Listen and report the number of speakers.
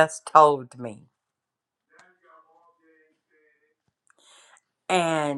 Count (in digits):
1